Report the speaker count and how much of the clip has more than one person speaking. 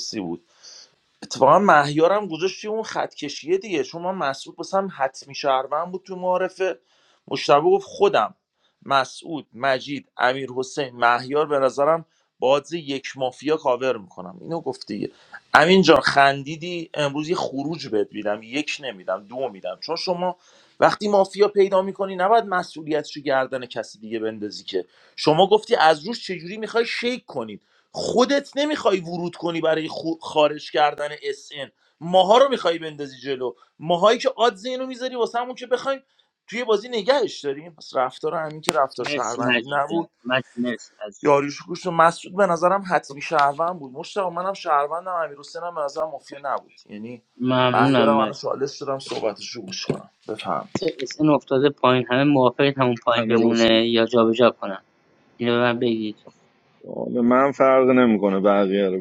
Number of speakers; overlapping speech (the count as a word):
three, about 4%